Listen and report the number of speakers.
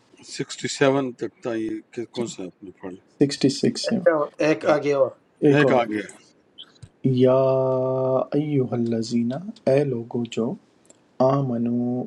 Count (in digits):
3